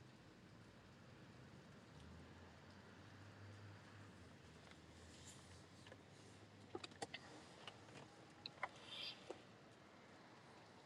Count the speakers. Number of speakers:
0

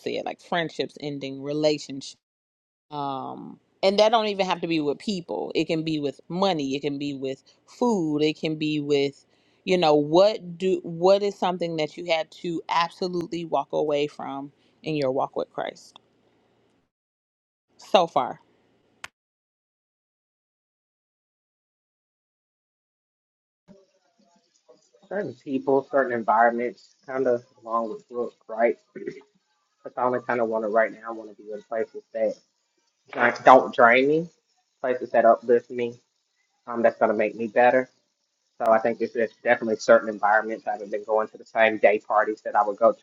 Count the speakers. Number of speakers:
2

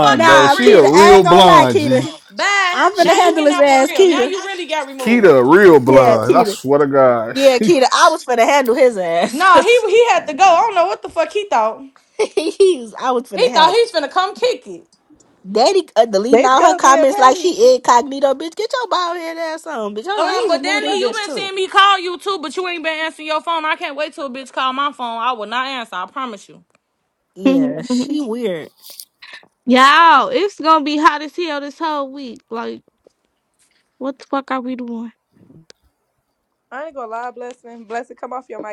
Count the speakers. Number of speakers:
5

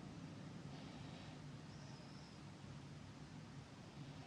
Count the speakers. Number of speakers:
0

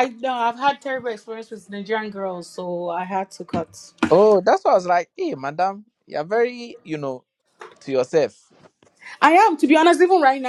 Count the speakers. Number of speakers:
2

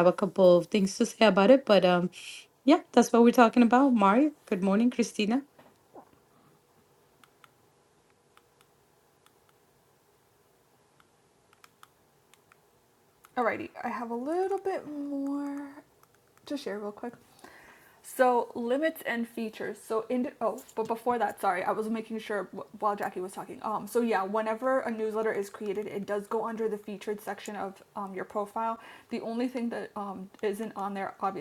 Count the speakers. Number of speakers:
2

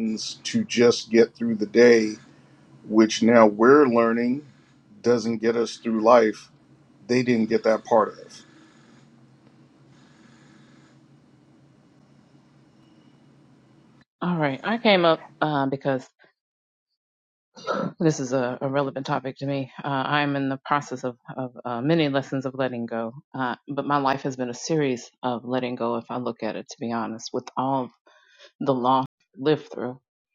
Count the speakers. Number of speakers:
2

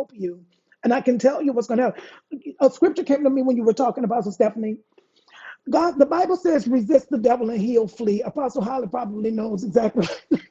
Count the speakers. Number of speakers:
1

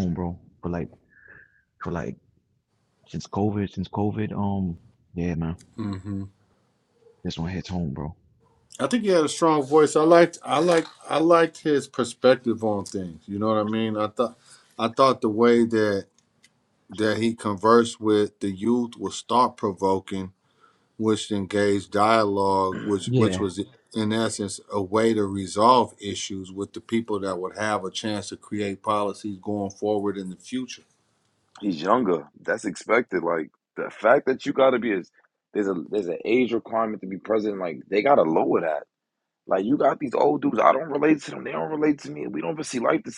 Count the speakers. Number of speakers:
3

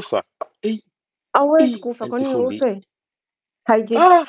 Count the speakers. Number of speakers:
2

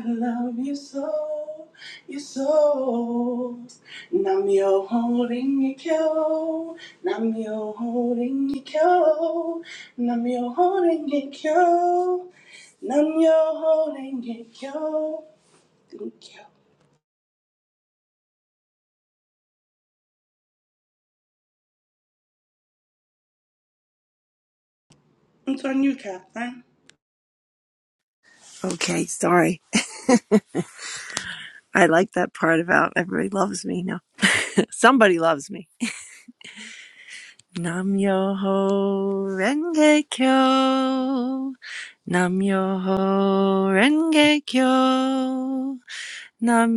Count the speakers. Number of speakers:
2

